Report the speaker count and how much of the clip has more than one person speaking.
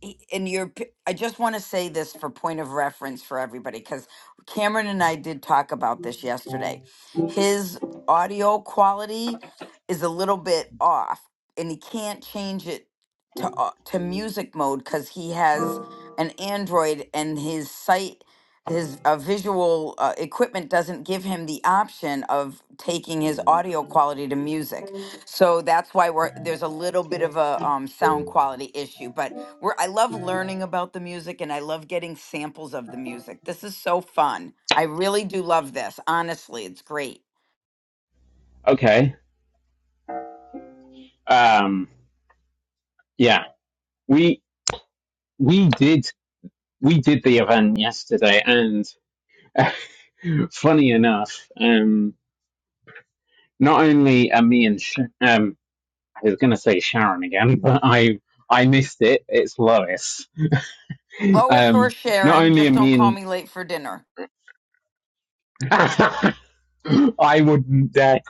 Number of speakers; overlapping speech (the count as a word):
two, about 2%